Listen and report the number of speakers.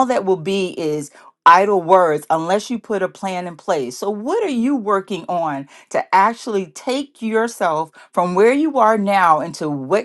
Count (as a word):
one